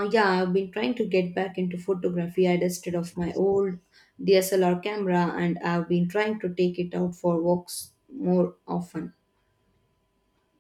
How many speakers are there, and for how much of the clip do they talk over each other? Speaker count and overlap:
one, no overlap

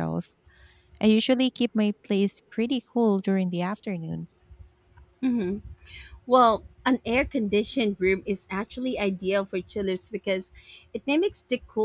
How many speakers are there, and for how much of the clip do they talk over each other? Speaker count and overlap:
two, no overlap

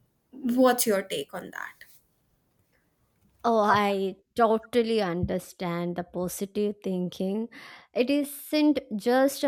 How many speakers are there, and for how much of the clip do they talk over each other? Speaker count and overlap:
two, no overlap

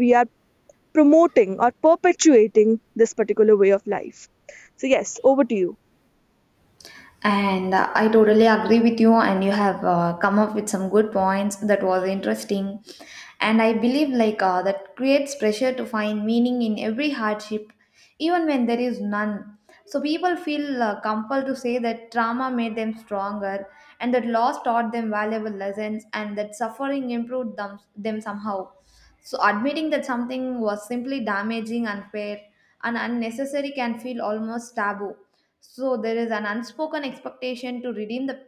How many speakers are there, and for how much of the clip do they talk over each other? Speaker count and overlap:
two, no overlap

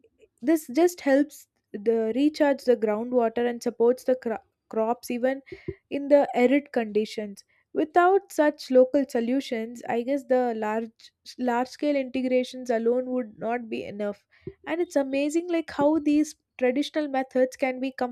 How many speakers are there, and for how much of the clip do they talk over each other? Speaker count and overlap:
one, no overlap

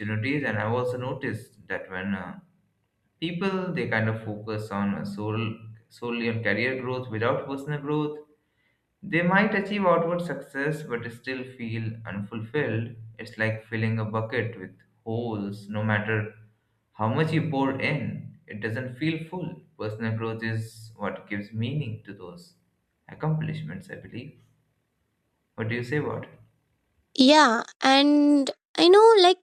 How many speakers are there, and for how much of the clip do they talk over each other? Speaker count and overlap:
two, no overlap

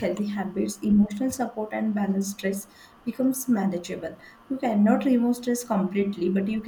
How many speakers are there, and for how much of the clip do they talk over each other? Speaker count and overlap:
one, no overlap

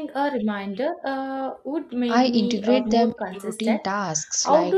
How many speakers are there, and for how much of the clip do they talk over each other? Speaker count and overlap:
two, about 45%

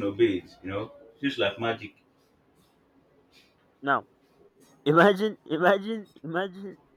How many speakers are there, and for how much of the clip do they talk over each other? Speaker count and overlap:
two, no overlap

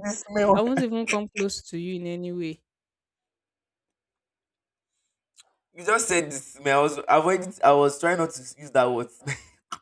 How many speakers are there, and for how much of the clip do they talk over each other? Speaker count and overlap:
two, about 1%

